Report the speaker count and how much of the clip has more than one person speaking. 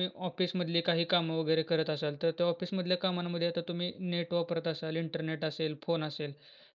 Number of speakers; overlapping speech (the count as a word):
one, no overlap